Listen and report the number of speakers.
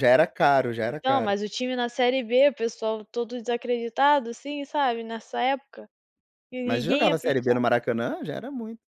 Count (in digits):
2